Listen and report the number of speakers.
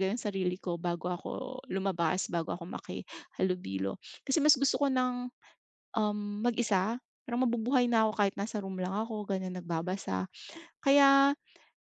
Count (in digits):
1